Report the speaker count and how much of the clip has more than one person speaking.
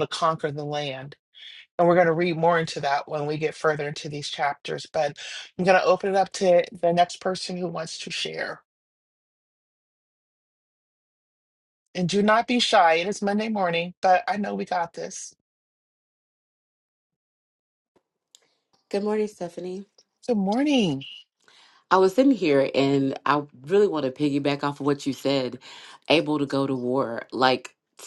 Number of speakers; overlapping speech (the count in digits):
2, no overlap